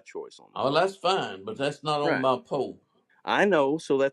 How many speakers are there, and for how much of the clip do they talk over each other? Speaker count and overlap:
2, about 12%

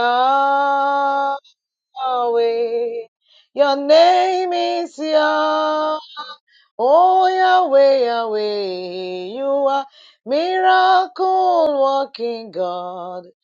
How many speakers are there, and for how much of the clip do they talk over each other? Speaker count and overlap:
1, no overlap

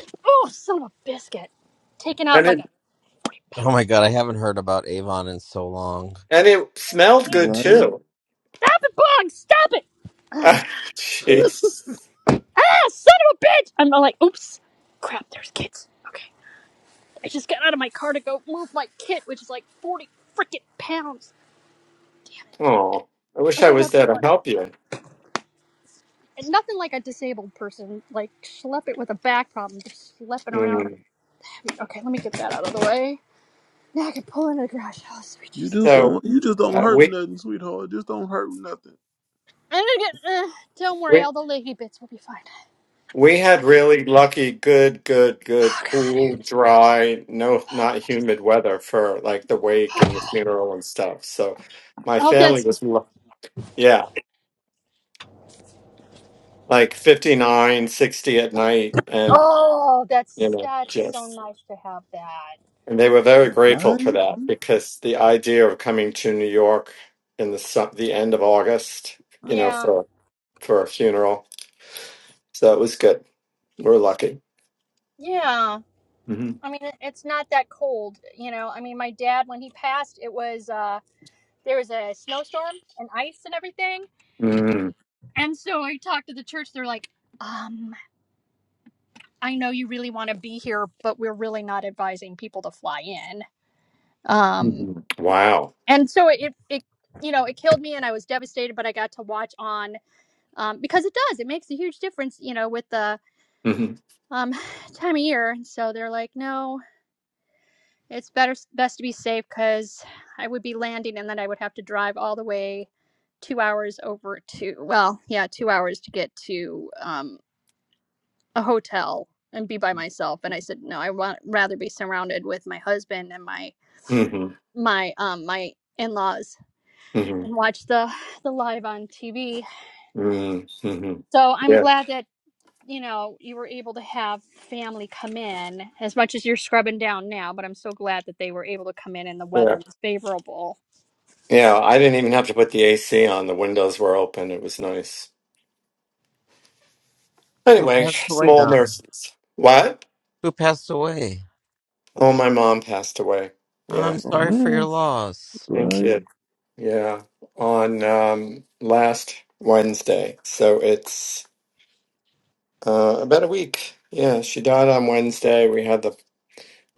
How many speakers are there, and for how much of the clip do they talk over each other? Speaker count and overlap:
4, about 6%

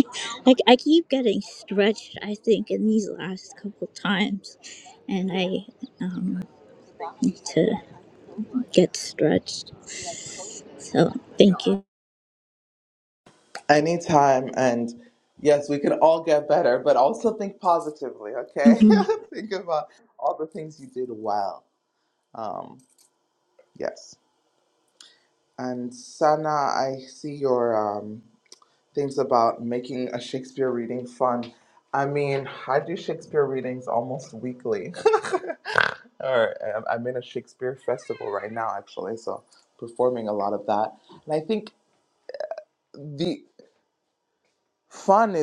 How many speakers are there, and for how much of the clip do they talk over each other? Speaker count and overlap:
2, no overlap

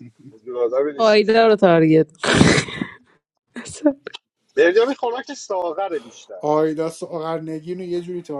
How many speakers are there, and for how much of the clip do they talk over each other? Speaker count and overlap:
3, about 2%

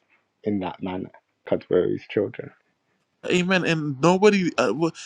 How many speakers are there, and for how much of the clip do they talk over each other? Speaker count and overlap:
2, no overlap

